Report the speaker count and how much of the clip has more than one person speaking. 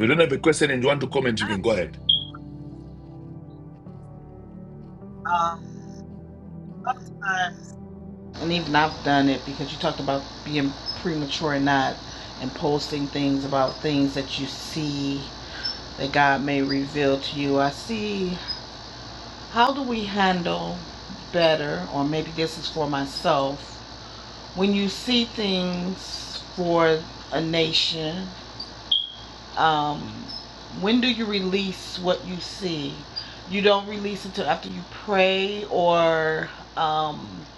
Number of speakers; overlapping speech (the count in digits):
2, no overlap